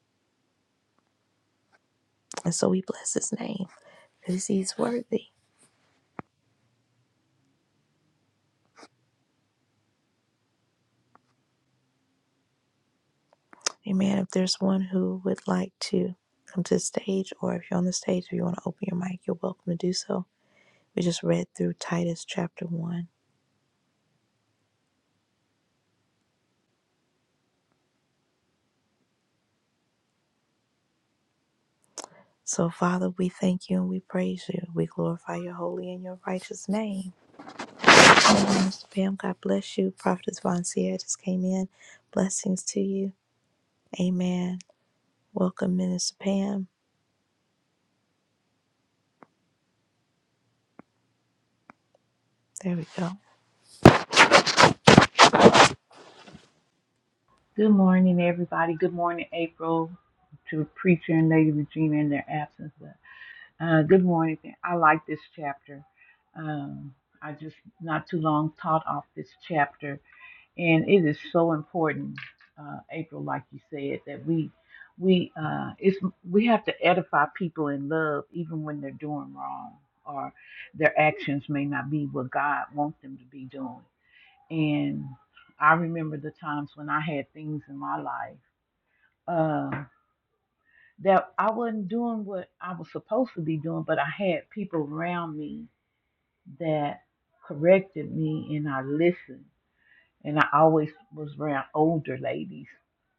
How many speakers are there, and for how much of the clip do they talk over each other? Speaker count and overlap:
two, no overlap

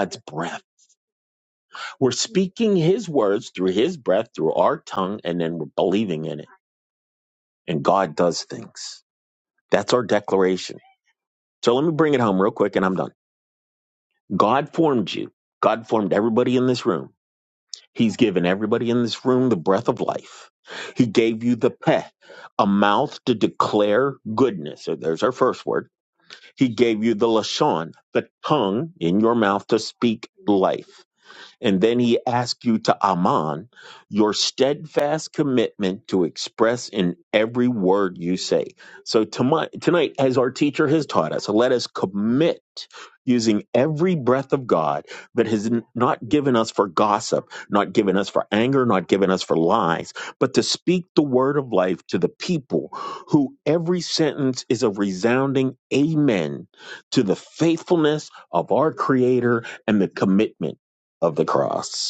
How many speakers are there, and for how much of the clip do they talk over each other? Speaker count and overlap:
one, no overlap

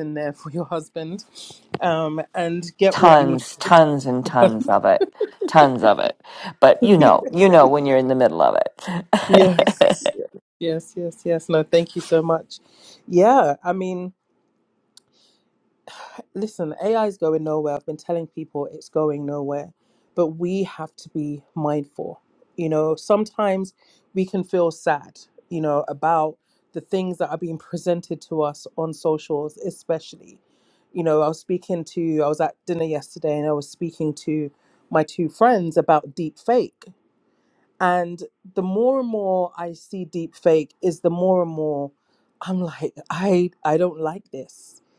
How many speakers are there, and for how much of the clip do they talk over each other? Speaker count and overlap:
two, about 2%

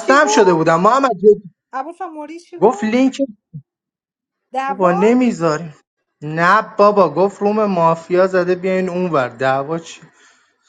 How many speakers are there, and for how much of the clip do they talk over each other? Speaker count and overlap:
two, about 13%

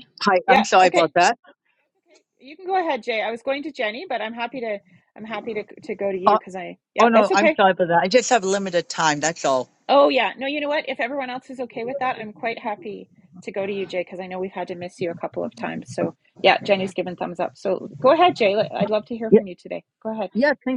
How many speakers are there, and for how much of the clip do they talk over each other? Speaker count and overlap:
two, about 7%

